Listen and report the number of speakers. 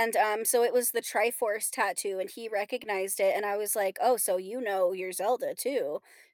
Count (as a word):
one